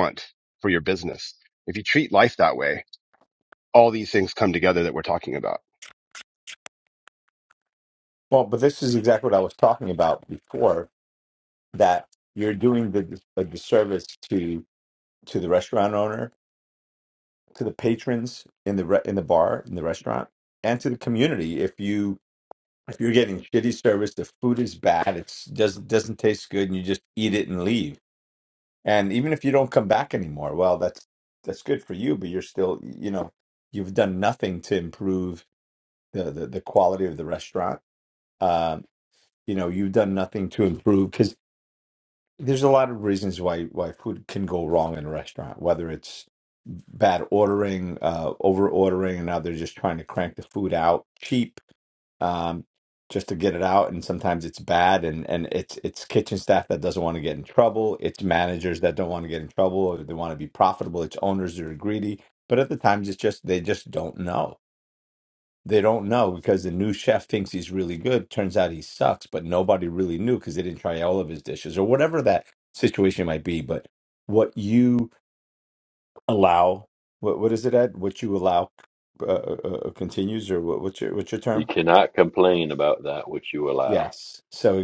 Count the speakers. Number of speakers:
3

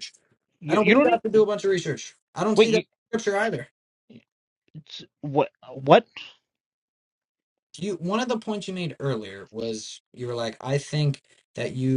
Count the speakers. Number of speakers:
2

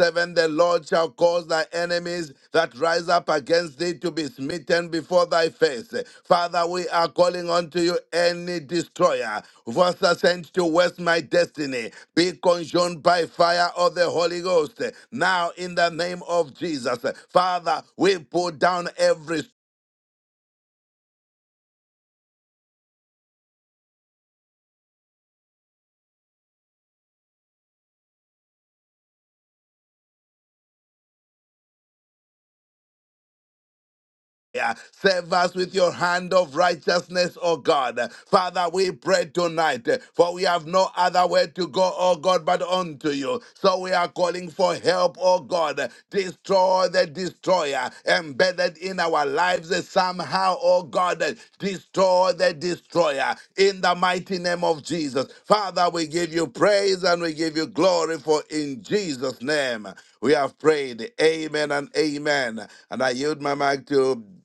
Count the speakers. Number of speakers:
1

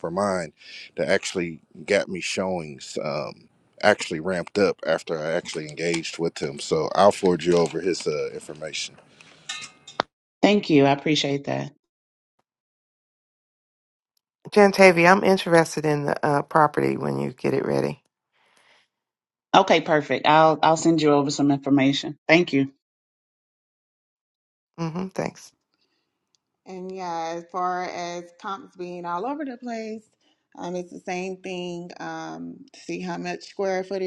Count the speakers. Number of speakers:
4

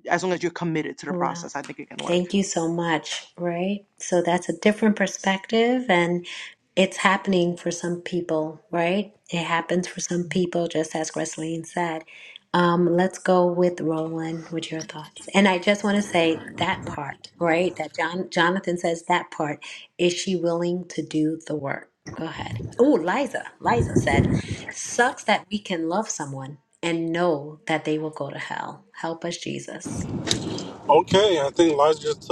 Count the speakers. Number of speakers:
3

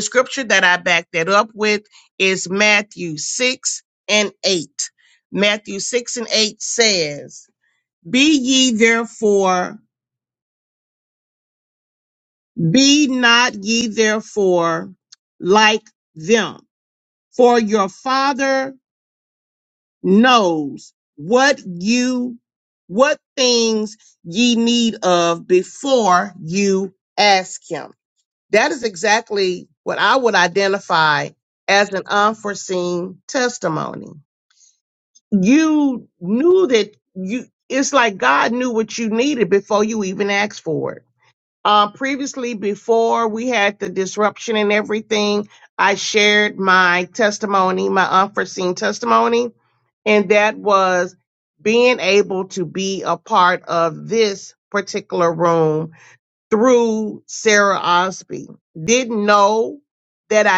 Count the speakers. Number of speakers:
1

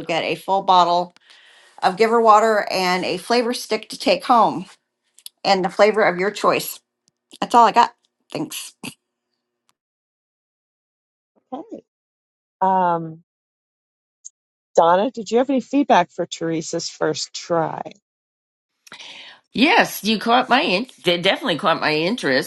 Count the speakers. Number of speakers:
3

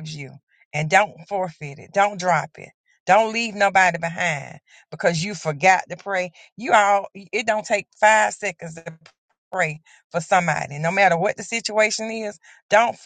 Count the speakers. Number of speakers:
1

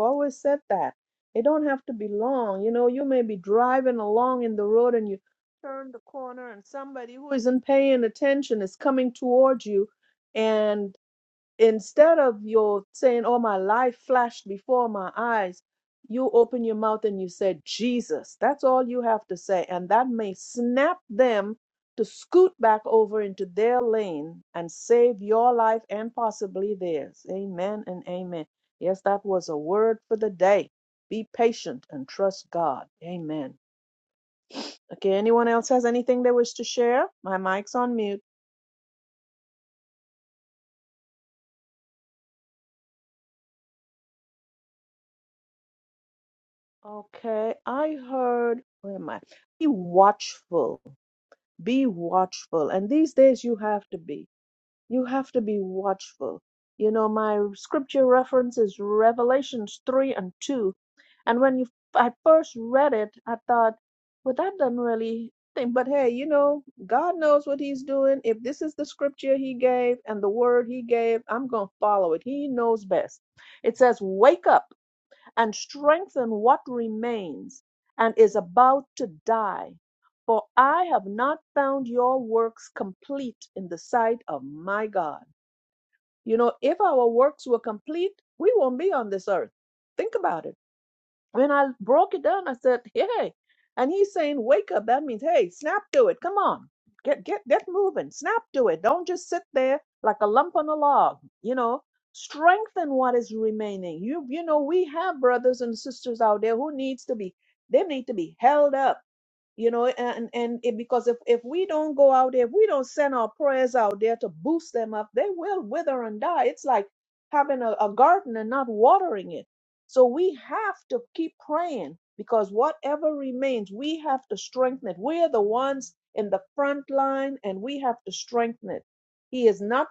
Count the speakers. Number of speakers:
1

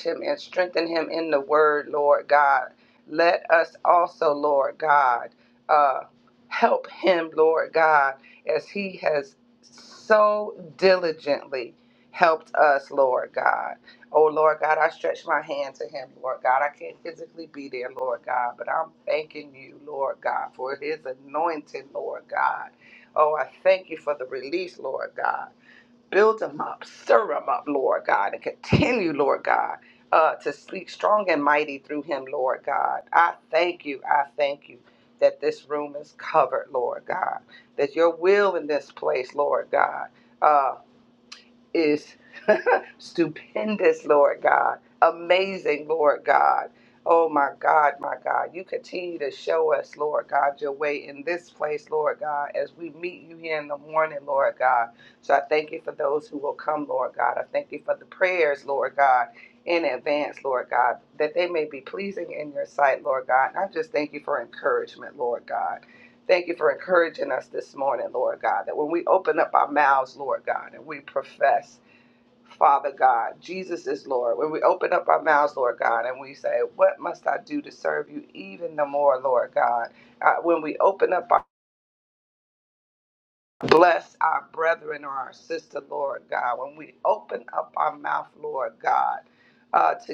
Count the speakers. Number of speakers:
1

